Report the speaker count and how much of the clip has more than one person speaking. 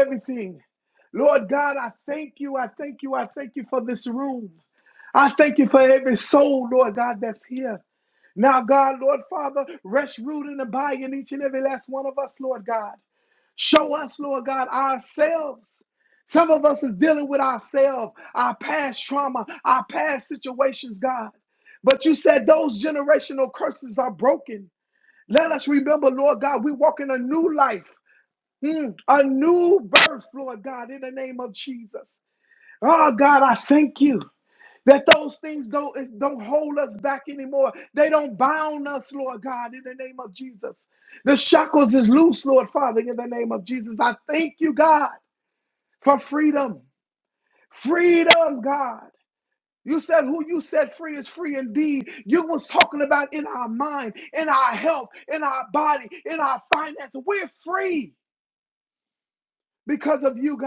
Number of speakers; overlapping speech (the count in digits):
1, no overlap